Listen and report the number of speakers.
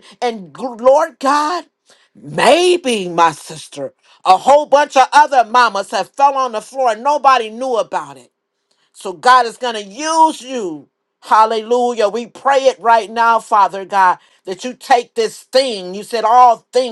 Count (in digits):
1